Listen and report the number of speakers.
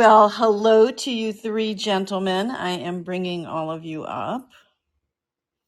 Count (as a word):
one